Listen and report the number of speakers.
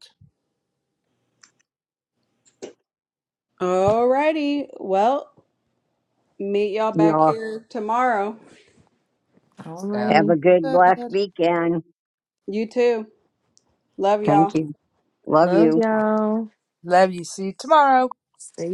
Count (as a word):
four